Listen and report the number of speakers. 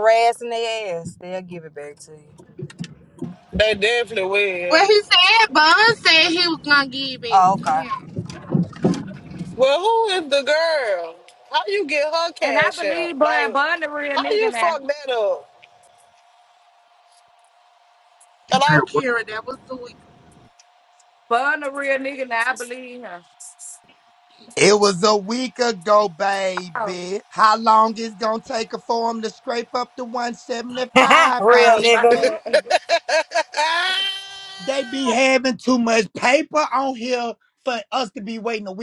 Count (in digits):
5